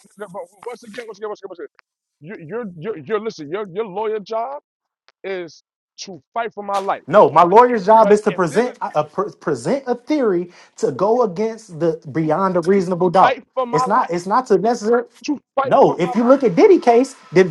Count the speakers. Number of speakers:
2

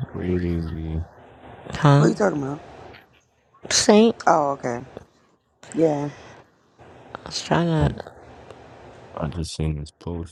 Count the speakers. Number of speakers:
3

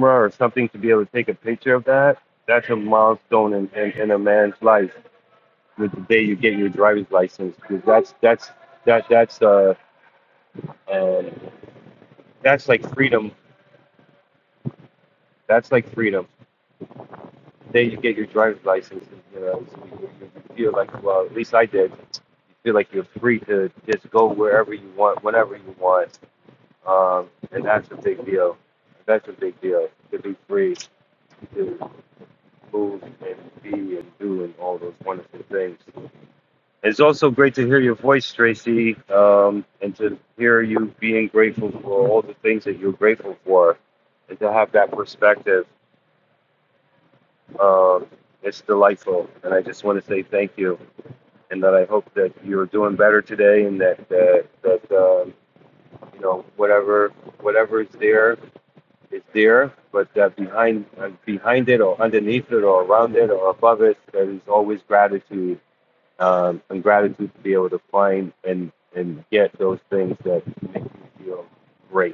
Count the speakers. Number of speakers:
1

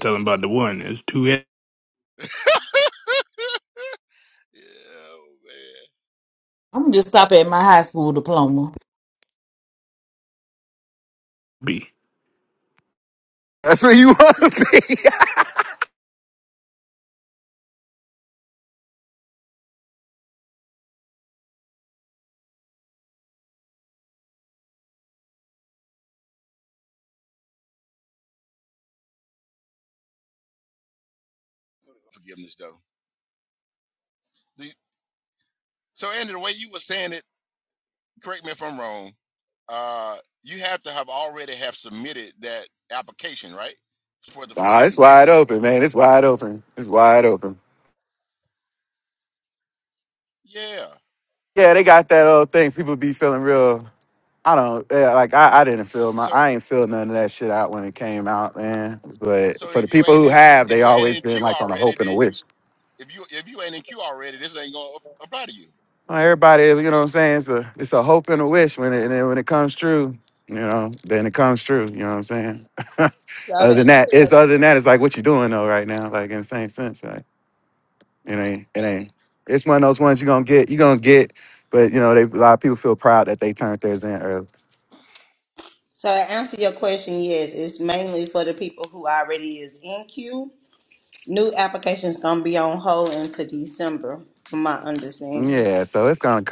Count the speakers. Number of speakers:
5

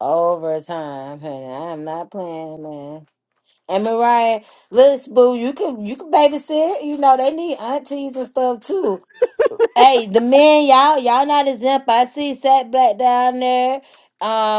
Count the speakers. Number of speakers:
1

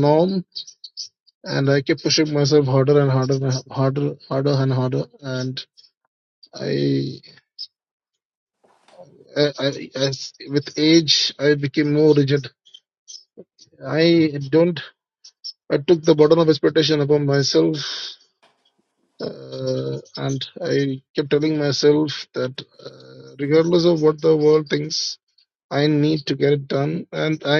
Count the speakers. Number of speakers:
1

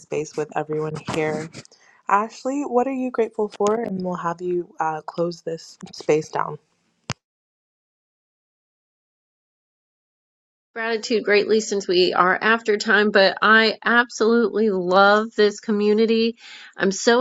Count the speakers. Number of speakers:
2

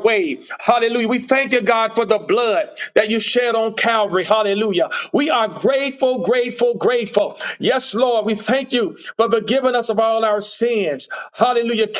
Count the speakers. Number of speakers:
1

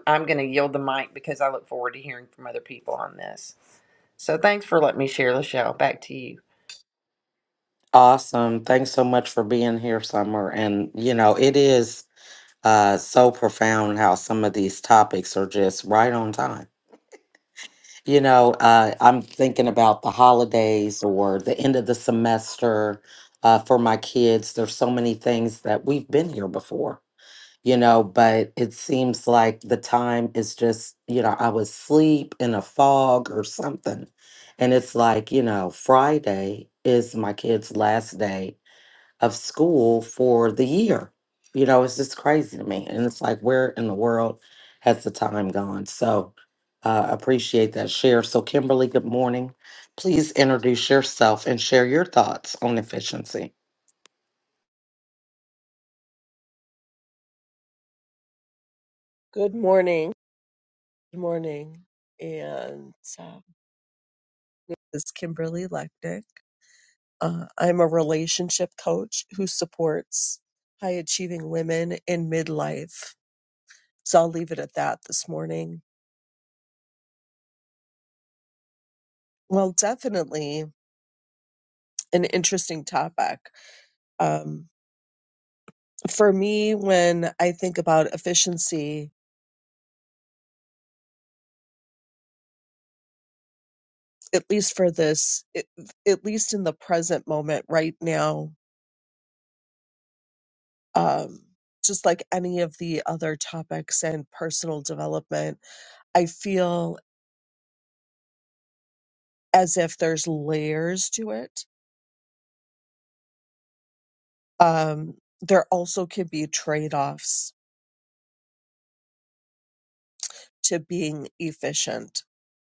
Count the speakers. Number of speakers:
3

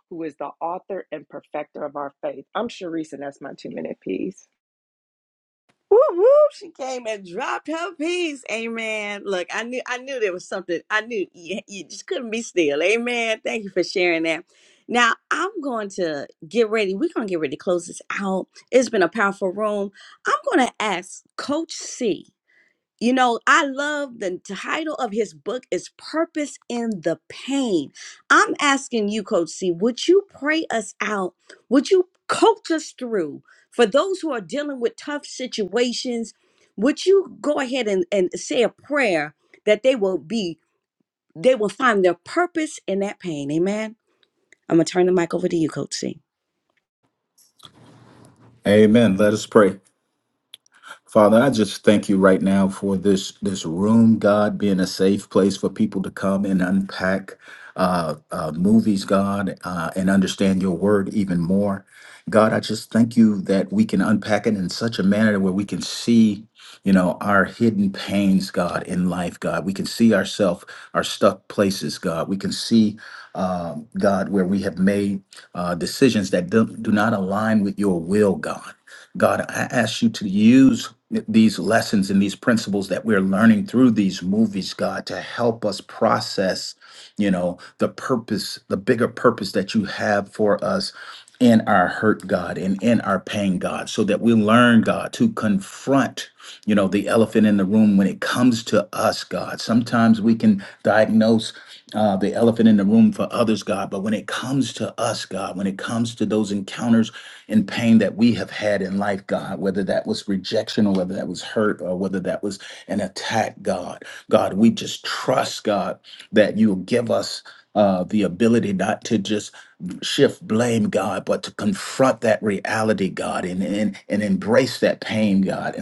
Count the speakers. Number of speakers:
3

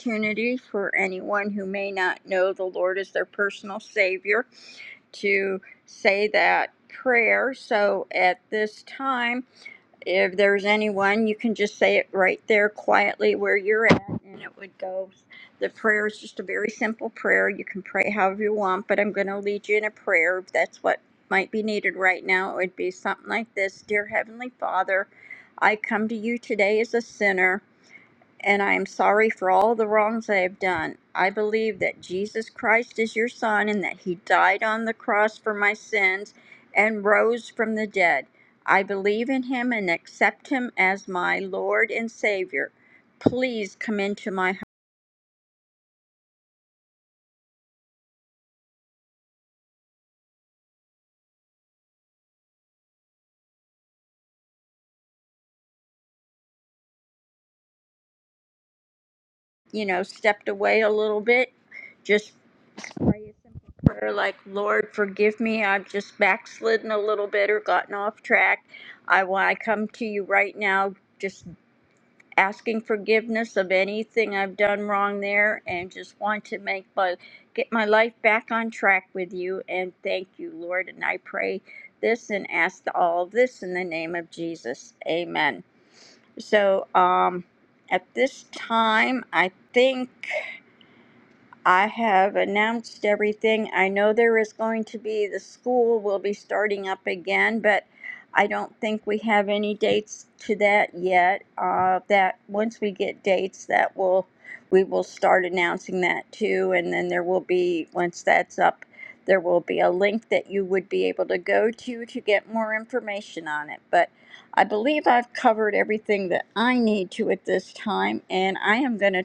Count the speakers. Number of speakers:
1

